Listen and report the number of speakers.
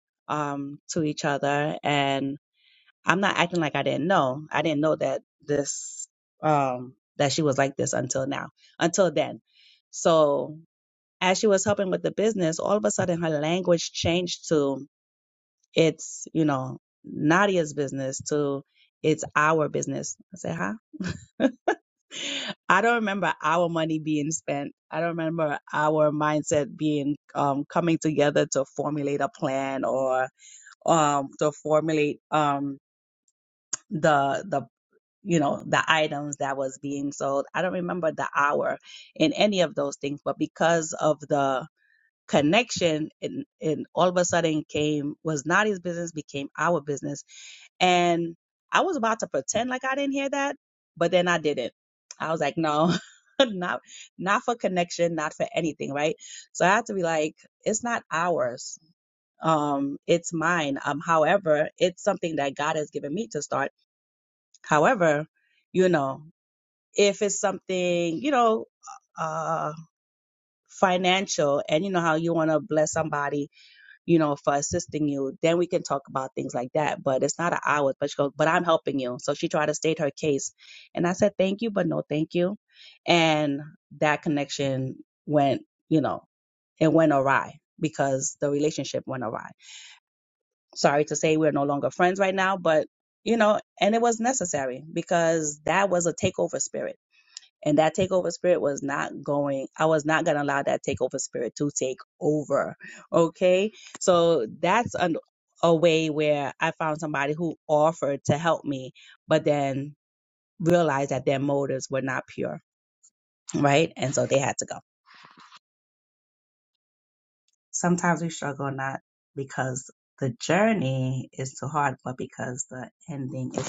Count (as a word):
one